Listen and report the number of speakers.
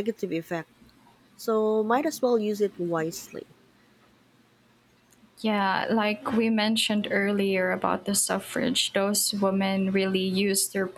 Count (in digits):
2